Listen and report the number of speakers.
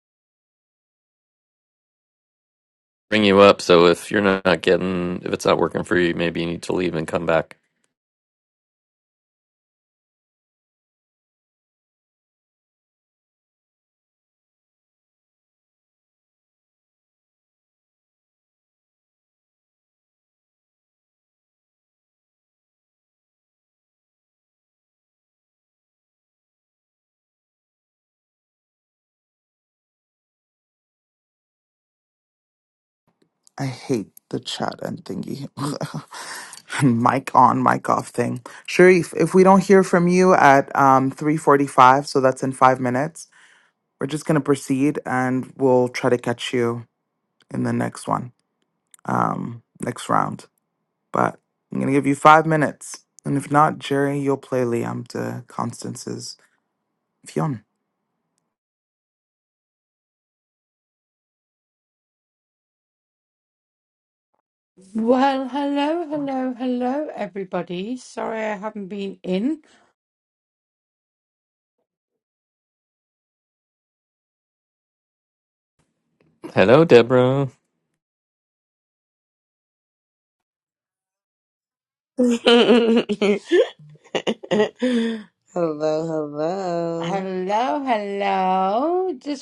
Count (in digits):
4